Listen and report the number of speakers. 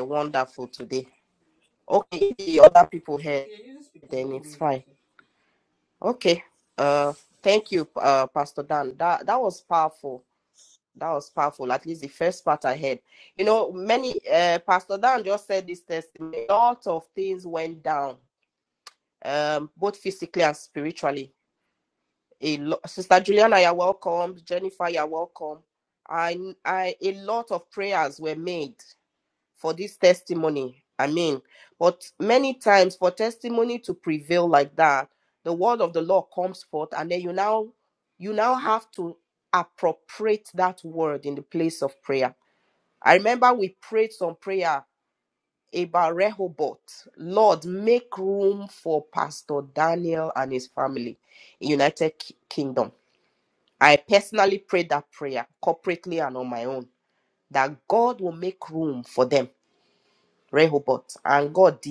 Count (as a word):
one